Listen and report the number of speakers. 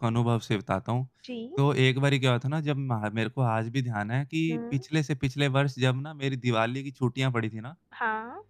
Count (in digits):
2